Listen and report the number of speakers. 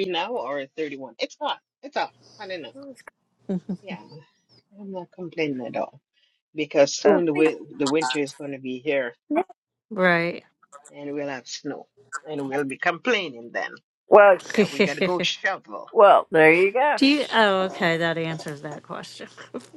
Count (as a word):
three